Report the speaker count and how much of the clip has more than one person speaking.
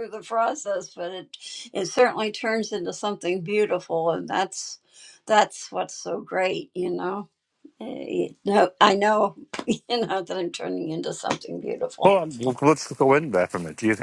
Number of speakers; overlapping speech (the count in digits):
2, under 1%